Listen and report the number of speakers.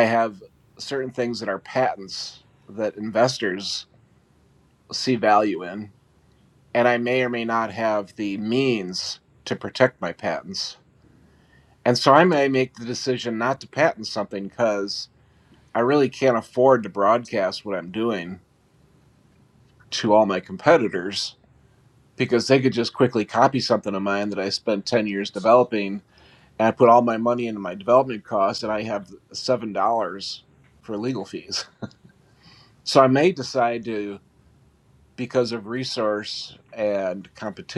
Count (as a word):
one